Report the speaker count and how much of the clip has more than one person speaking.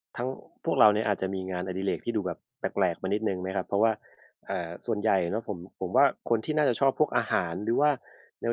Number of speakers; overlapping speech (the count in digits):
1, no overlap